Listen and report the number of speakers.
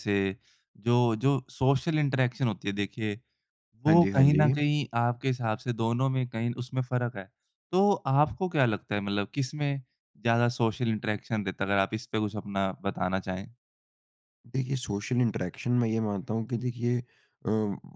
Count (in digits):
2